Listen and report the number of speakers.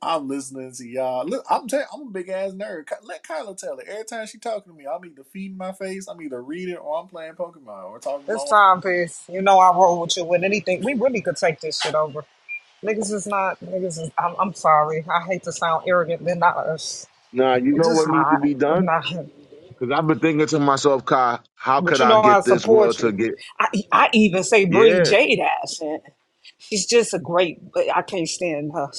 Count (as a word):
three